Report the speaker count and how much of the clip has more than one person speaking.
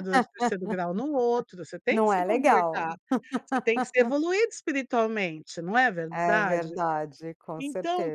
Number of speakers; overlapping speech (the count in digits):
2, about 27%